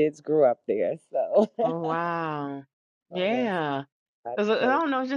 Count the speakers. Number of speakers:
2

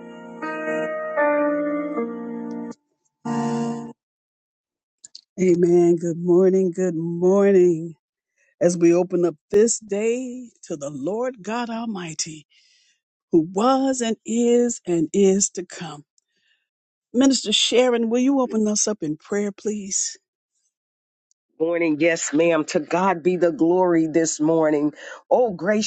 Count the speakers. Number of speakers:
2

